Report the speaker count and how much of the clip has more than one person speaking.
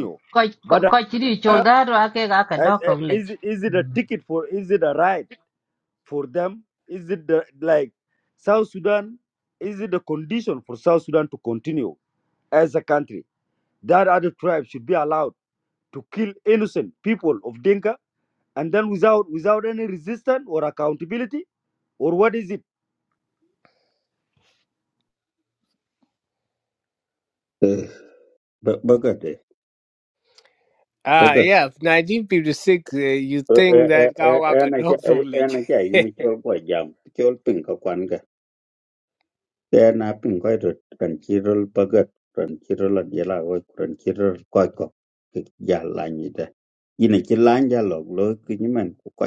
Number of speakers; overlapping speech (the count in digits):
4, about 5%